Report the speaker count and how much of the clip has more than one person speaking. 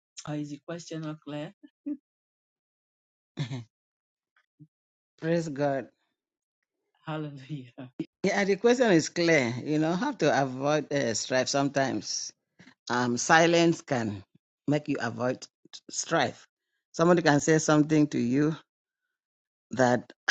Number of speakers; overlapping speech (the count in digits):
2, no overlap